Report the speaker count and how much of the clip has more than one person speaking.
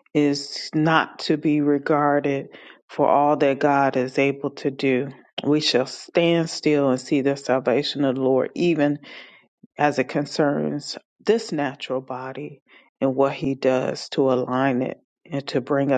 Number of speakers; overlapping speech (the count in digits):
1, no overlap